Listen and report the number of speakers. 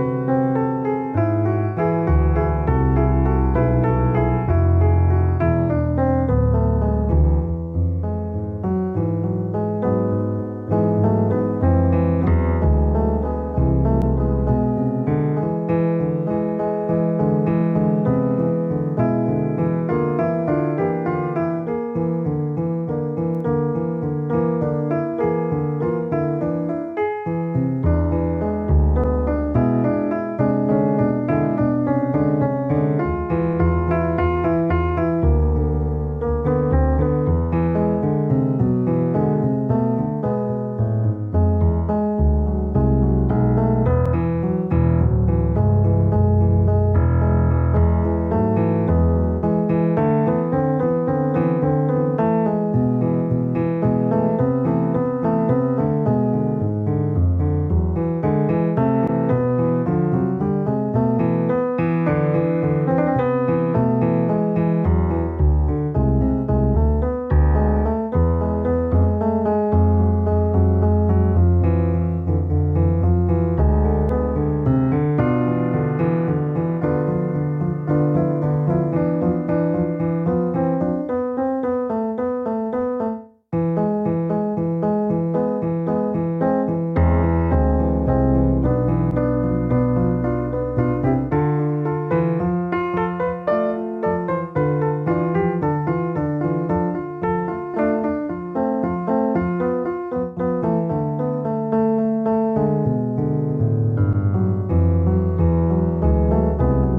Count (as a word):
zero